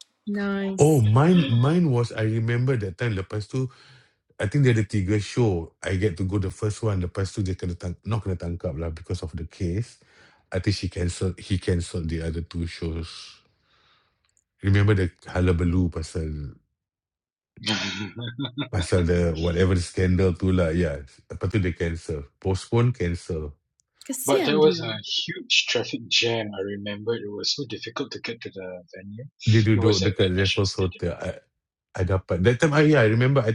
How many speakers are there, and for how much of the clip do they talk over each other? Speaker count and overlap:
3, about 6%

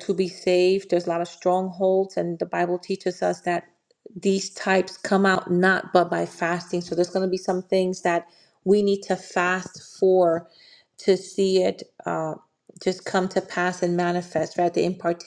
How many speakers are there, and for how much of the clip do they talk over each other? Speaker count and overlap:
1, no overlap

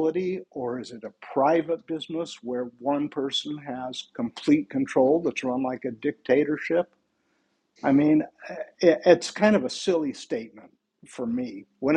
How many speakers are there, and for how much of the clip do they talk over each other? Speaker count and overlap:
1, no overlap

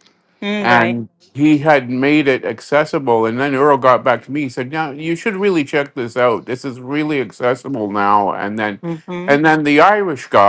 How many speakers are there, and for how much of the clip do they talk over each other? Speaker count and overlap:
2, about 4%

